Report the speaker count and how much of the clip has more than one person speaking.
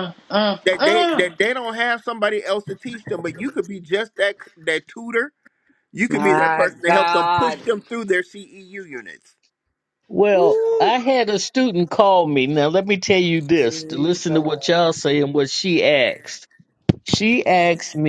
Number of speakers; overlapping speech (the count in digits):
3, about 19%